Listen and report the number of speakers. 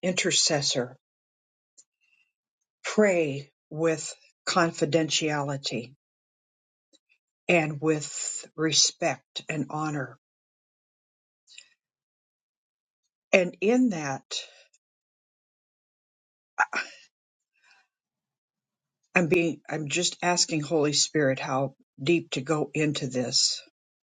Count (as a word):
one